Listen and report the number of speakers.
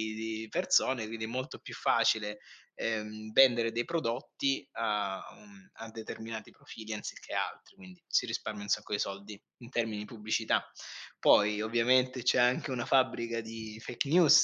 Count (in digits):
1